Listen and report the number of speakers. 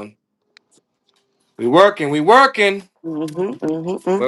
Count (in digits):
2